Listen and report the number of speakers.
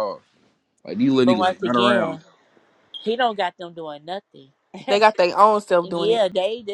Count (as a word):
three